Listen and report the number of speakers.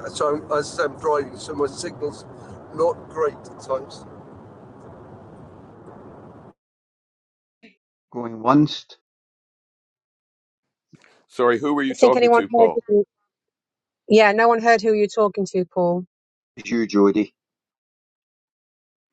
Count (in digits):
4